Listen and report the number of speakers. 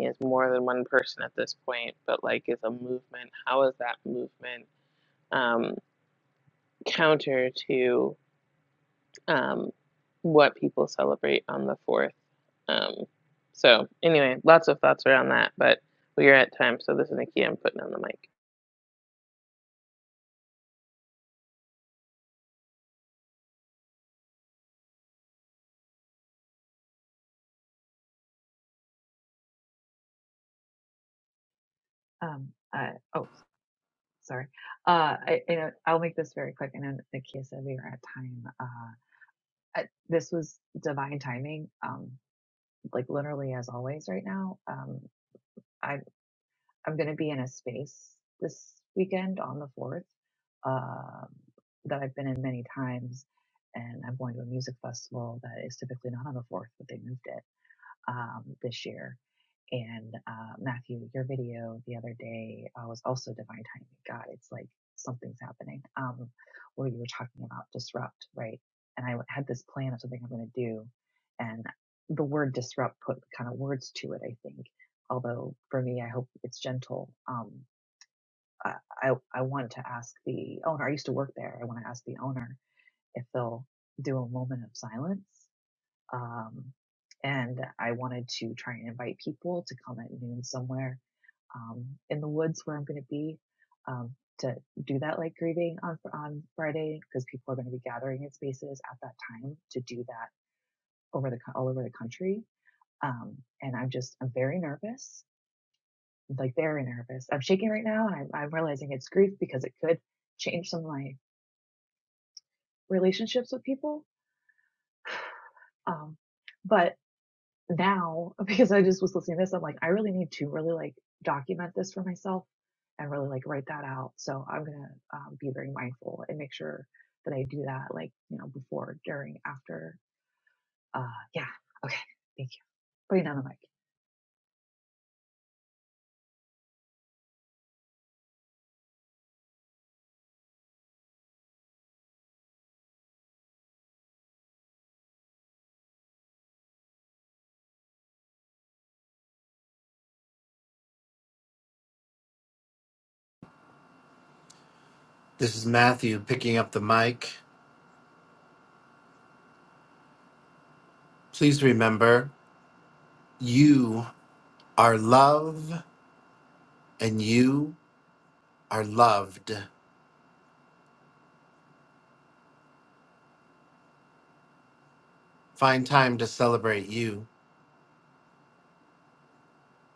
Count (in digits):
3